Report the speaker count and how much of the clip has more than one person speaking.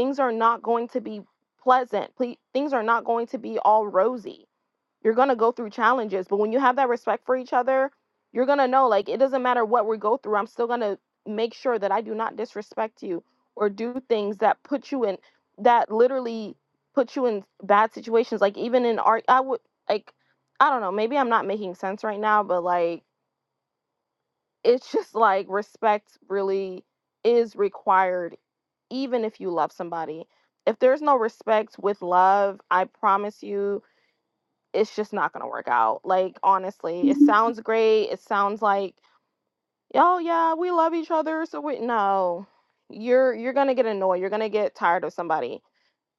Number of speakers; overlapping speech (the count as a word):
one, no overlap